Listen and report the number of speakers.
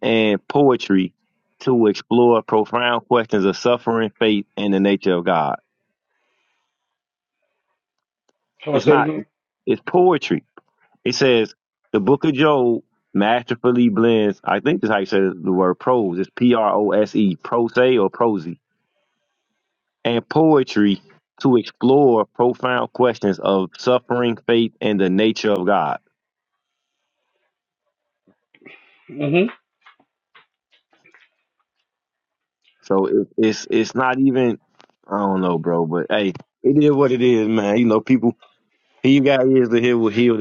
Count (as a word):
two